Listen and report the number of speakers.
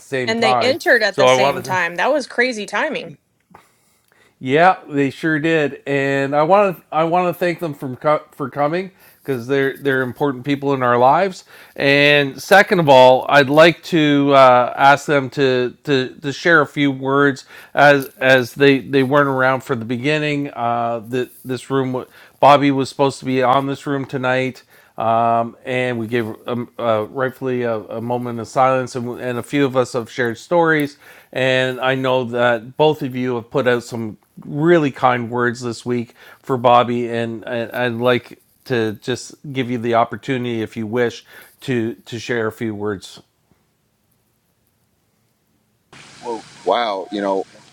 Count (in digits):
3